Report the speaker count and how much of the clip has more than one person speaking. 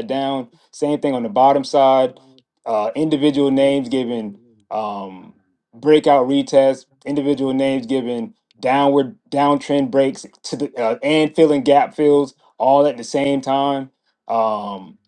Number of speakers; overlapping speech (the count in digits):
1, no overlap